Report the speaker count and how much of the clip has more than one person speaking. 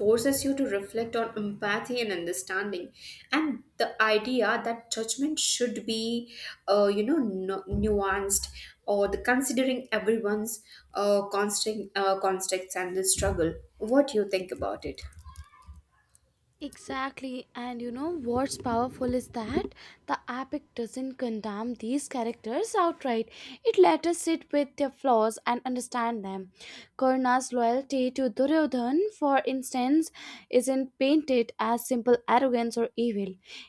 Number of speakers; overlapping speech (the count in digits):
2, no overlap